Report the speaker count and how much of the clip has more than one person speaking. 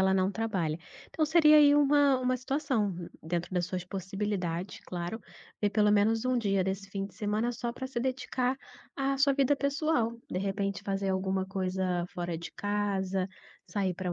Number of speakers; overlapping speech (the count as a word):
one, no overlap